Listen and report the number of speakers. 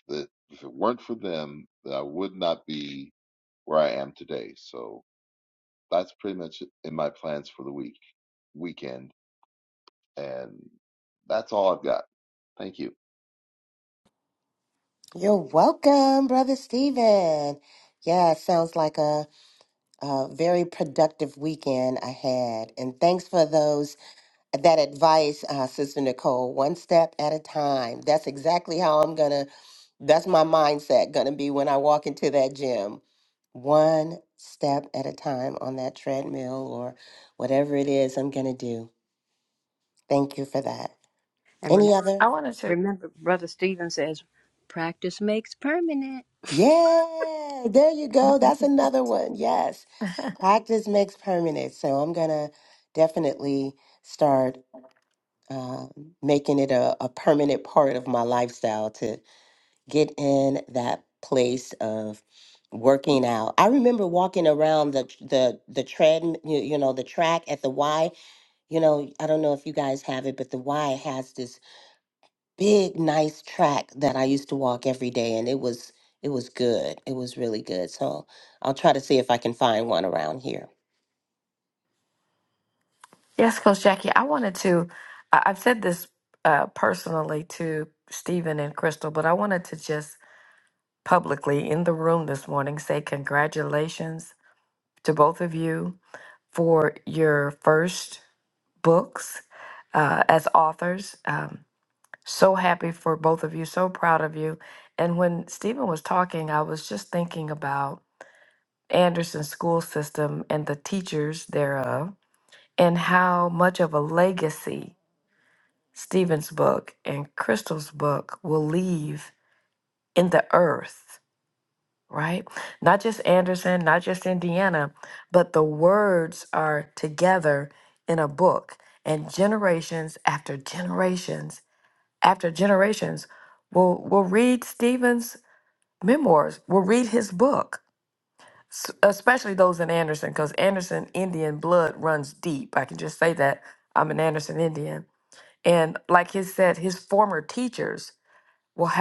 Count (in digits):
4